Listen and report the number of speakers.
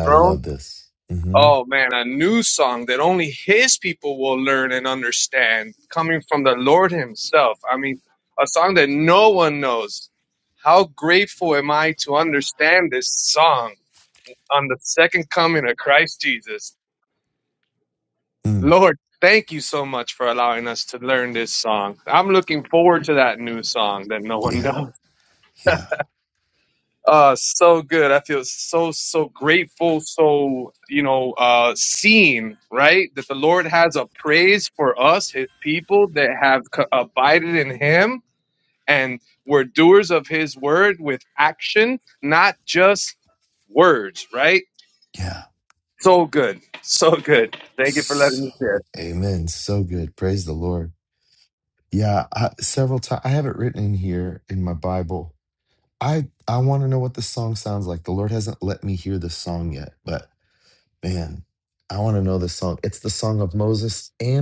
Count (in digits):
2